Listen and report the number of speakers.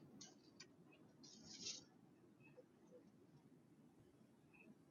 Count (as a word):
zero